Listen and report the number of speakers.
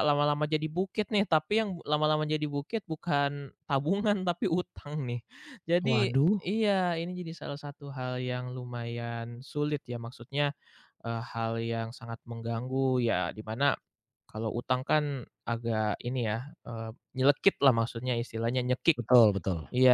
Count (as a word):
two